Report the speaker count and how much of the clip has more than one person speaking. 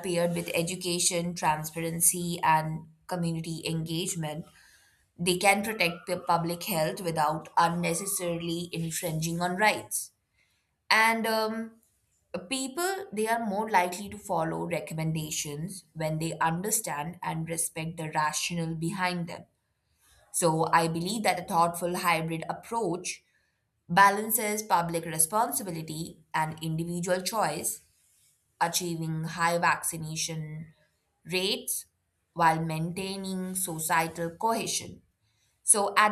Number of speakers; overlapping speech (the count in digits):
1, no overlap